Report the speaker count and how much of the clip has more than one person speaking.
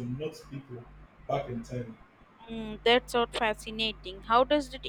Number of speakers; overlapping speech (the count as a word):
two, no overlap